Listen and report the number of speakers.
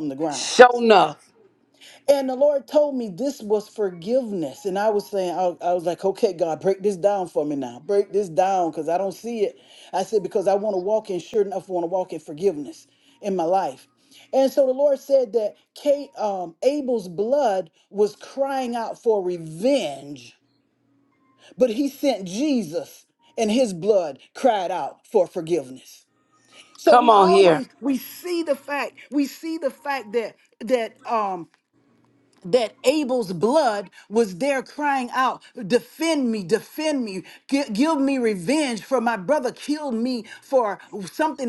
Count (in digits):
2